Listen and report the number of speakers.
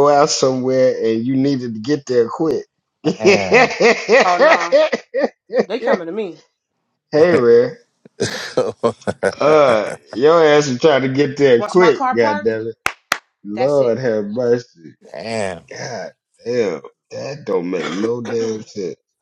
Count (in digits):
3